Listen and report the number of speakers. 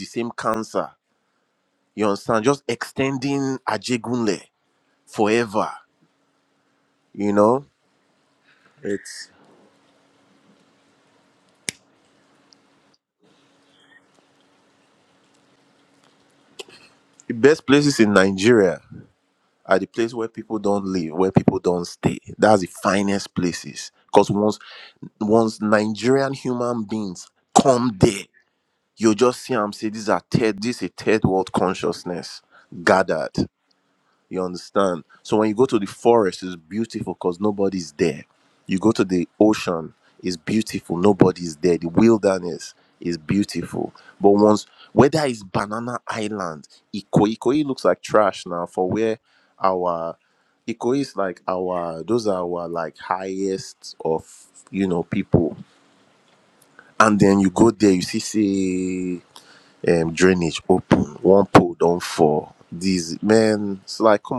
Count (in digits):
1